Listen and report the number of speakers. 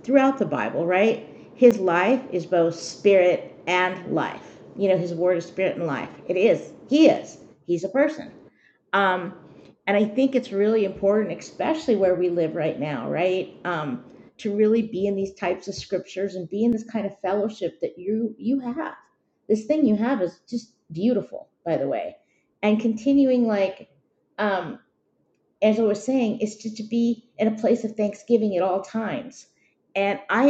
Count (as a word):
one